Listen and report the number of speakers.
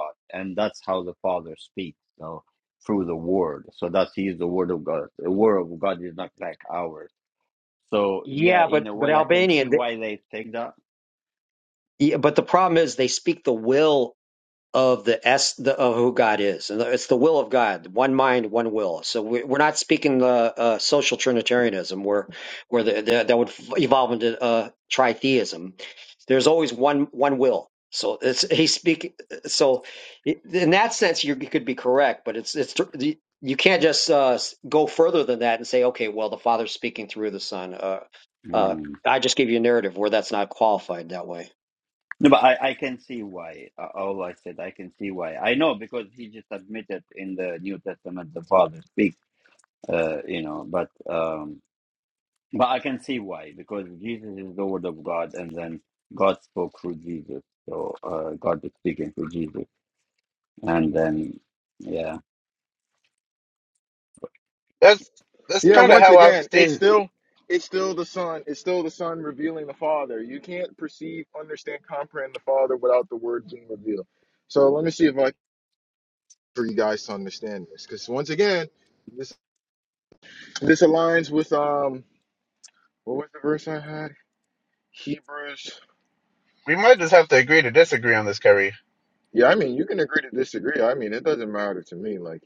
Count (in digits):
4